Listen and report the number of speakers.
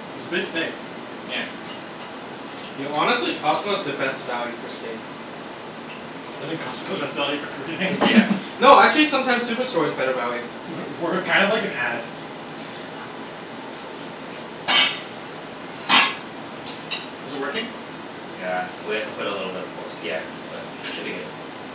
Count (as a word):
three